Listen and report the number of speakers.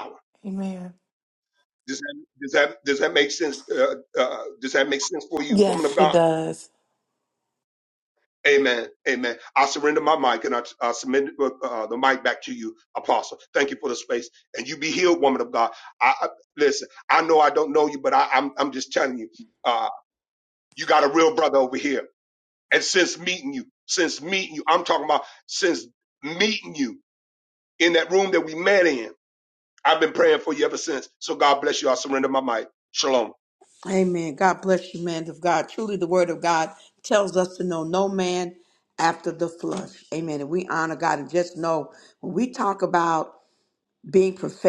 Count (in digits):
3